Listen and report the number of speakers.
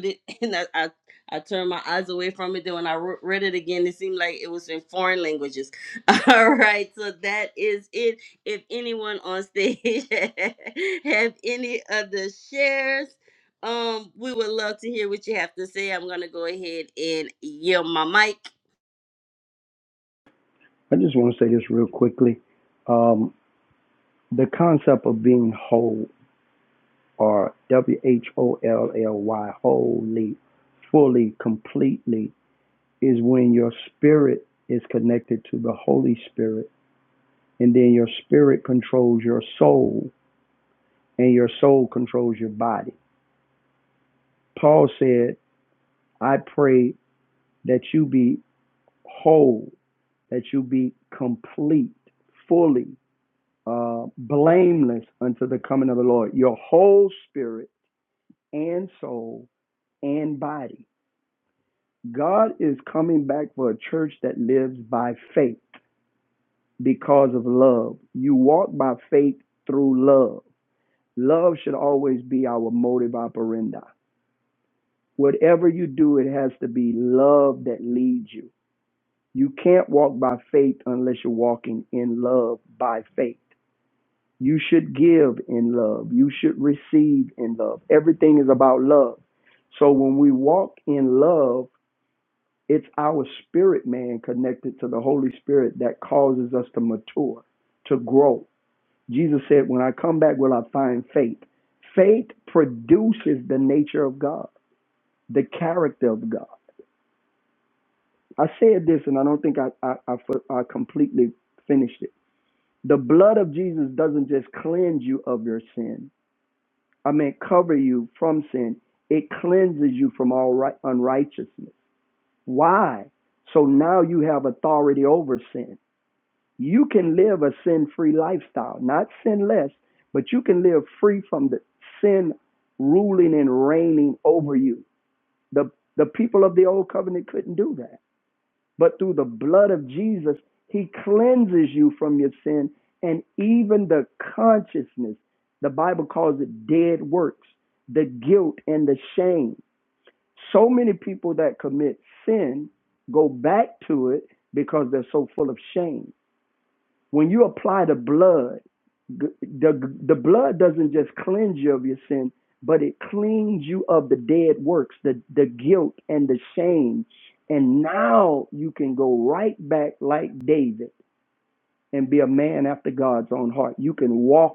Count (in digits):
2